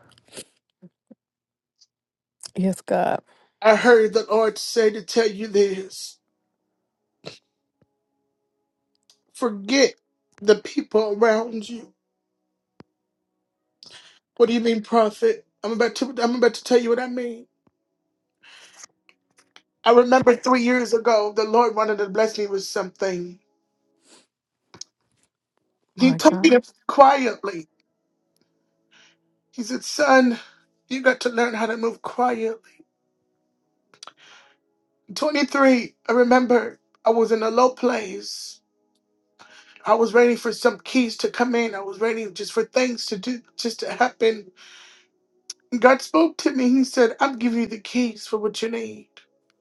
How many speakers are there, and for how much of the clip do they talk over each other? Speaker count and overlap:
2, about 1%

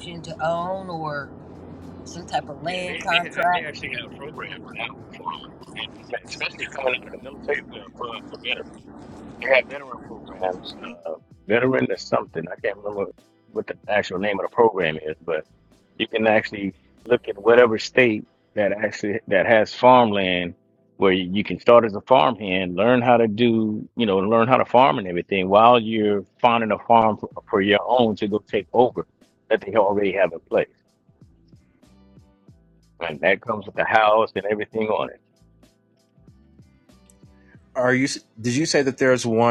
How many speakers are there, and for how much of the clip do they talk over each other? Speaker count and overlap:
3, about 3%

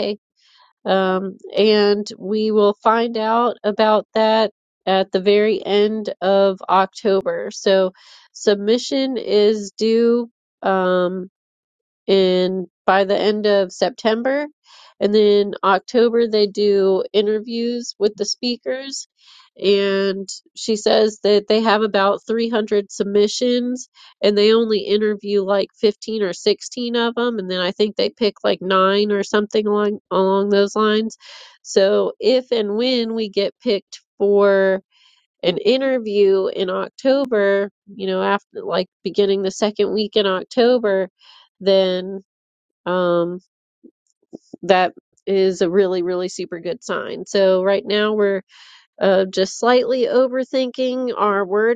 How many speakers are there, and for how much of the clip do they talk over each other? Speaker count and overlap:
1, no overlap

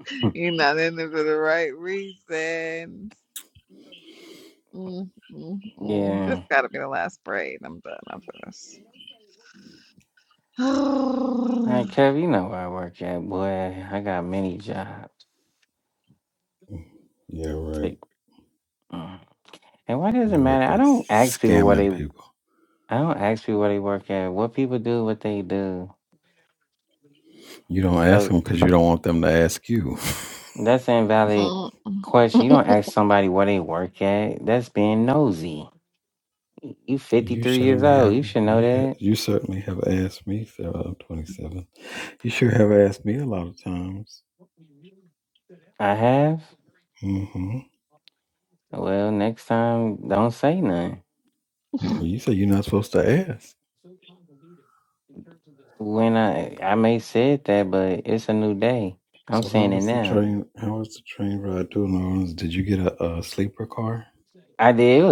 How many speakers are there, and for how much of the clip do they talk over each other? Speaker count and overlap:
3, about 8%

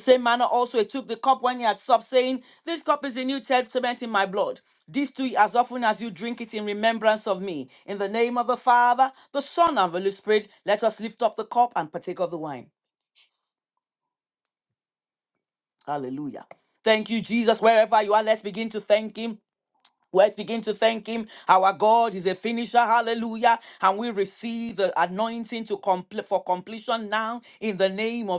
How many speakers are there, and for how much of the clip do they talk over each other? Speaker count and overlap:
1, no overlap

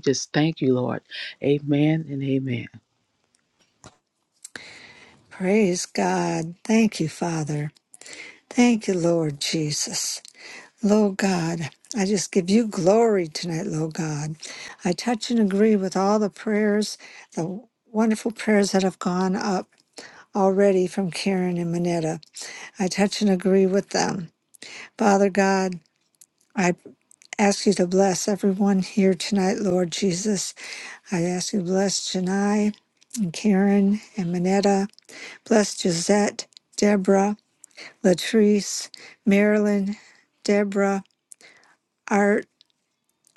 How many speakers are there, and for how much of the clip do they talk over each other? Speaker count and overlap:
2, no overlap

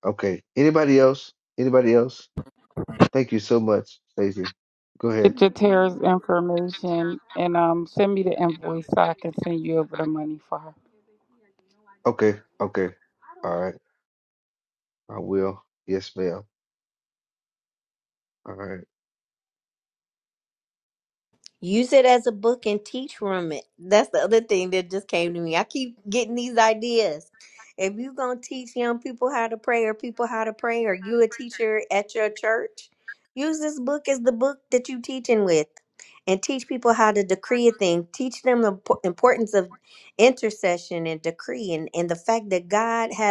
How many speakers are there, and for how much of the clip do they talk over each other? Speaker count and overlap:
3, under 1%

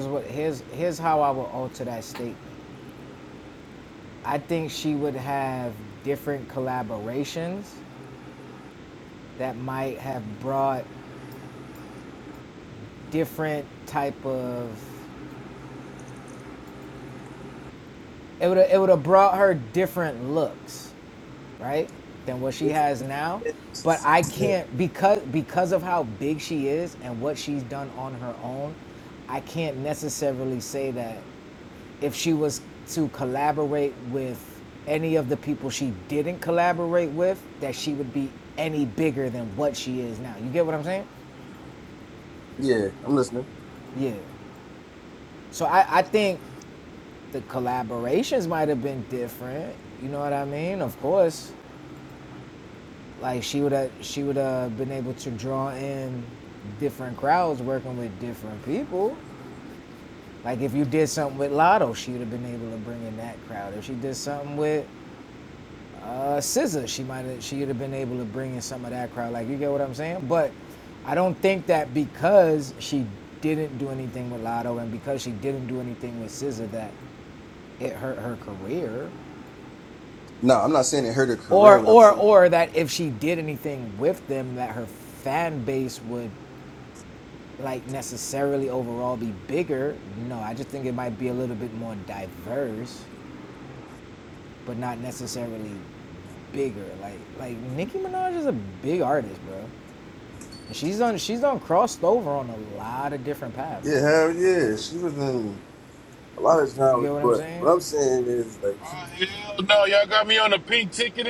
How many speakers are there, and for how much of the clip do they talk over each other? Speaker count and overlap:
3, about 2%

